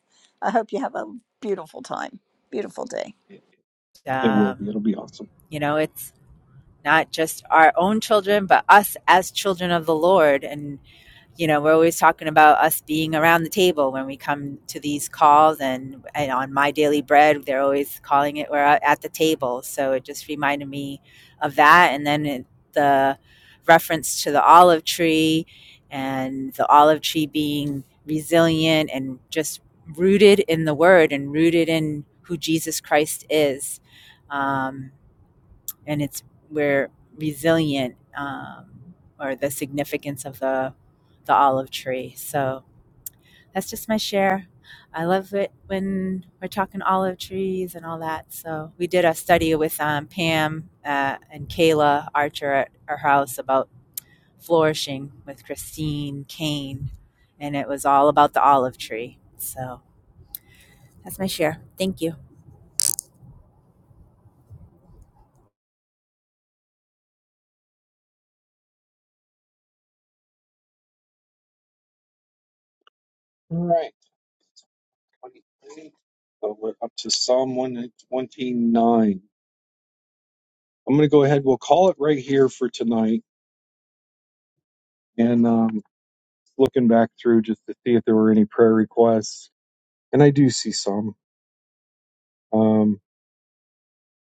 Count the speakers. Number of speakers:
three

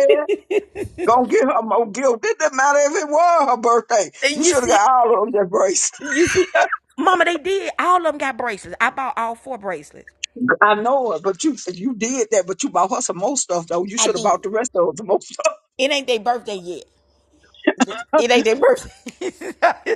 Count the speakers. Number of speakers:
two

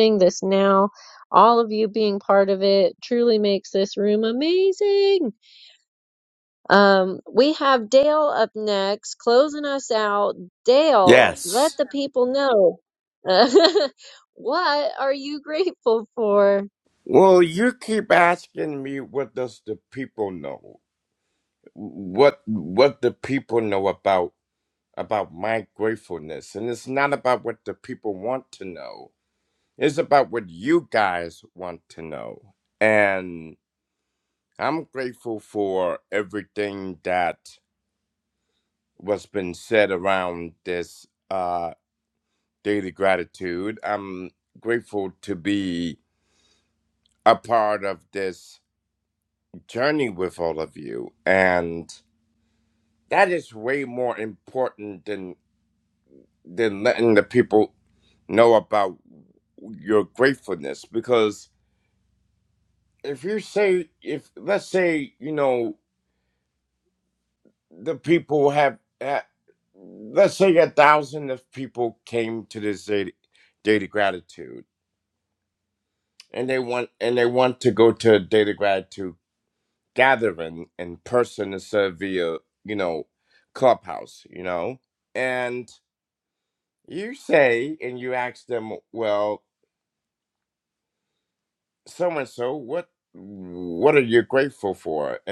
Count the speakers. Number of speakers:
two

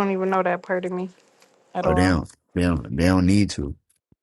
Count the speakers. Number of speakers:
two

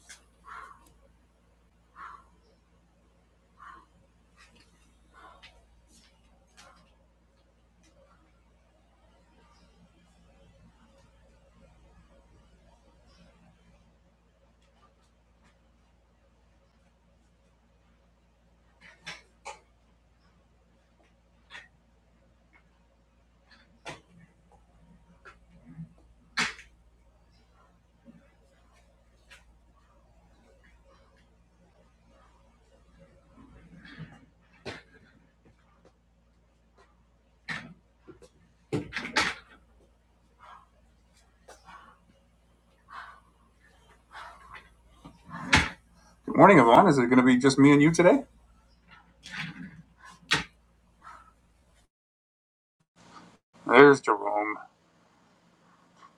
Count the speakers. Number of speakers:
one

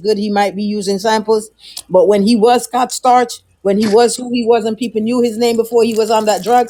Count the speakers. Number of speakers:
one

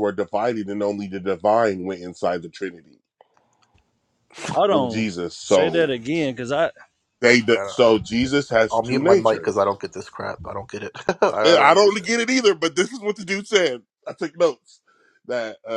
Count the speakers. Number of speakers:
three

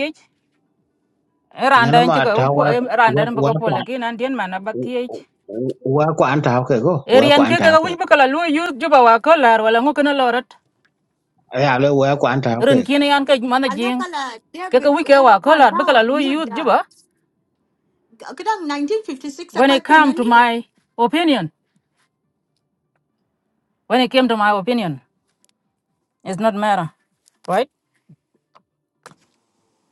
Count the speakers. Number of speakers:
three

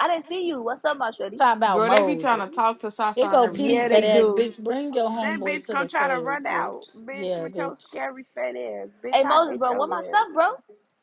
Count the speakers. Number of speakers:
four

